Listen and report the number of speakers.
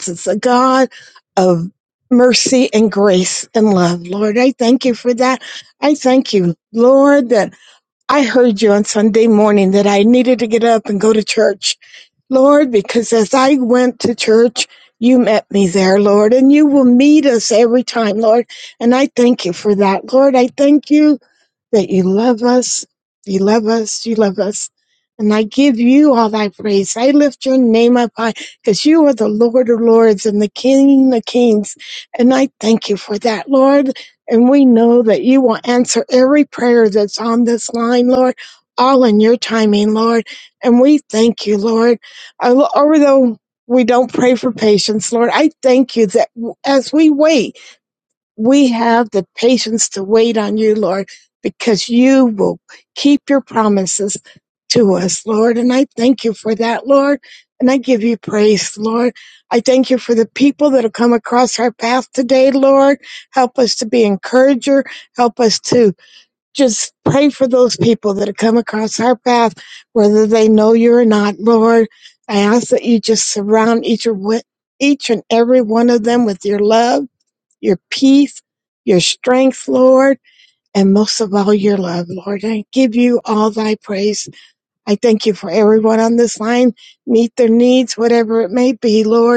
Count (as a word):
one